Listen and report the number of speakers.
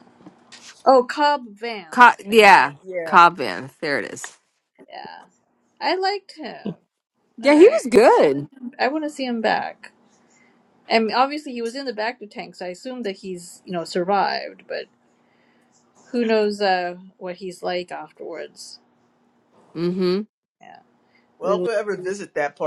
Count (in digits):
3